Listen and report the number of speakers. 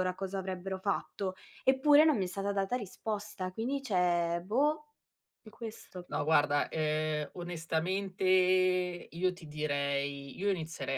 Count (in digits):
2